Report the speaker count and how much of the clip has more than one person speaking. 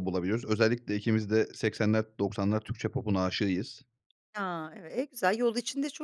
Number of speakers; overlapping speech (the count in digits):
2, no overlap